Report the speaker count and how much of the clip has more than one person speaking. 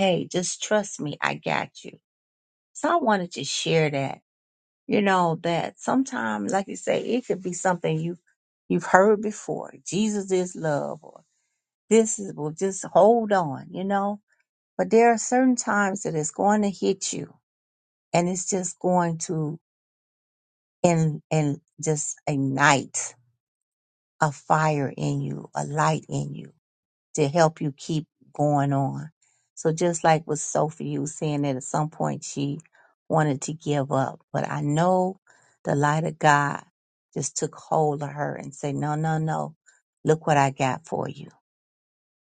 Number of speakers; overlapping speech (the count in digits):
1, no overlap